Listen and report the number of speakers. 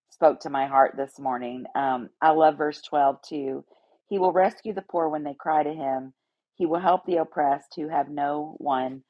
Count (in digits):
1